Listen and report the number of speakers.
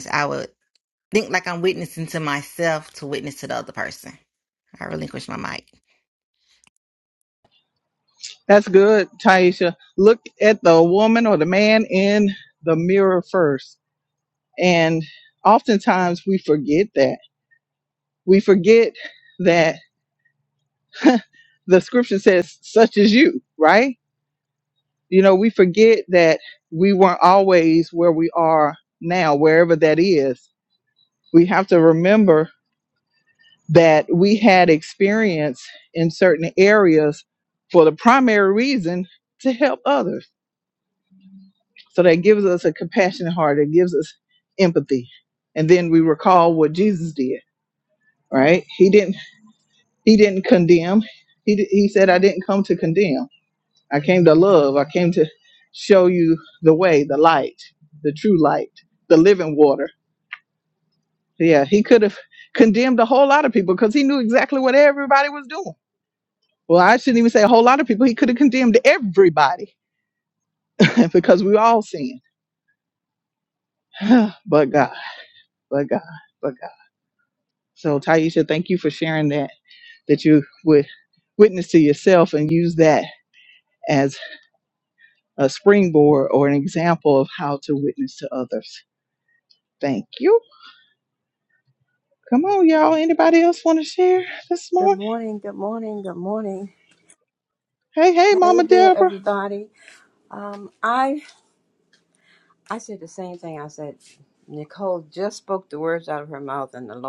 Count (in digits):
3